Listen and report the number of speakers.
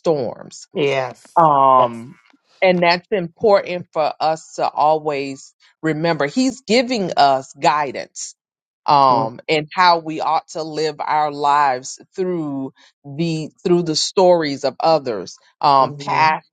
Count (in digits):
2